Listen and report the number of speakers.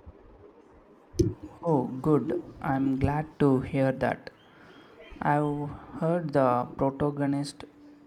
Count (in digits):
1